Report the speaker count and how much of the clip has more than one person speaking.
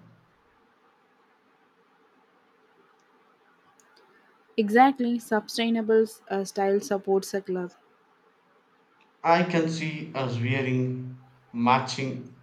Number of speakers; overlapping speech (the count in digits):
2, no overlap